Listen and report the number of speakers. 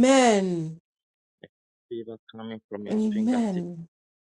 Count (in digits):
2